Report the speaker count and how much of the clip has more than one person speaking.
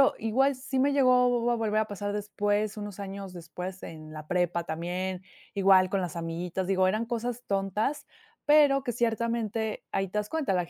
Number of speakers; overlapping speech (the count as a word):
one, no overlap